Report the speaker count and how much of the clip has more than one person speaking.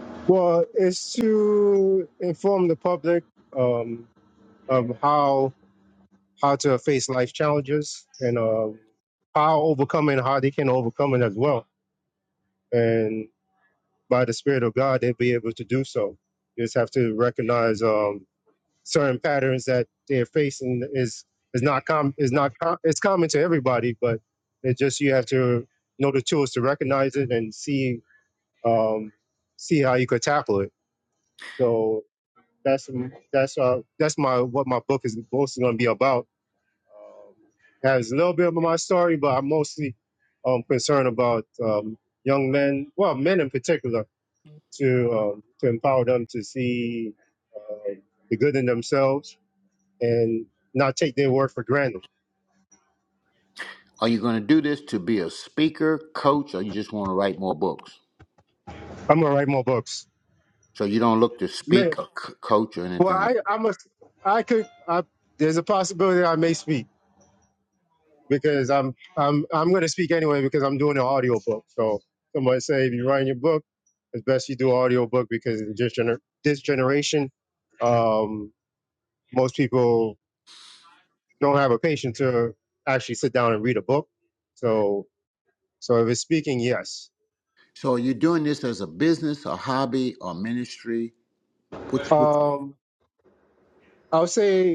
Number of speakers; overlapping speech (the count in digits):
2, about 1%